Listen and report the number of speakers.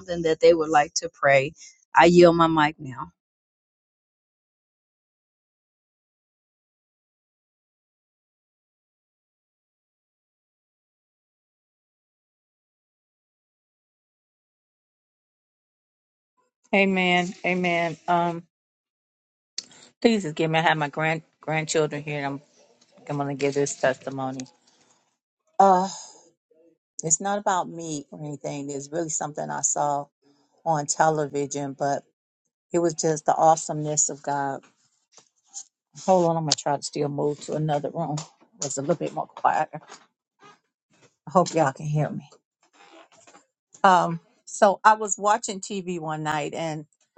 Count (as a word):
two